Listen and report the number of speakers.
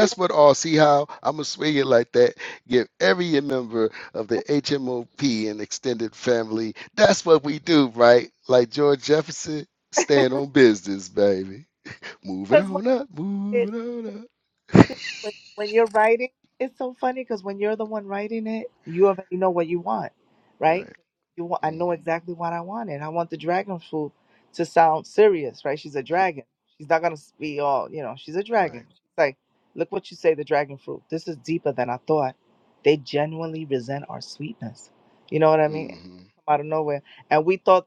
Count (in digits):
2